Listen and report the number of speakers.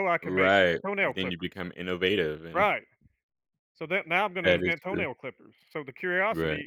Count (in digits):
2